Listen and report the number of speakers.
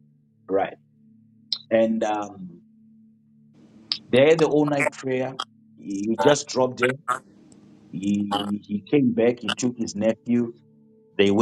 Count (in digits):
1